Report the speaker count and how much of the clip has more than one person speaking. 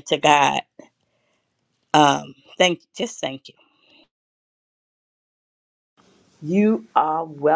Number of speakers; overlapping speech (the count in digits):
2, no overlap